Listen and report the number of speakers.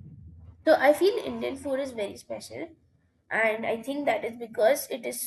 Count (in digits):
1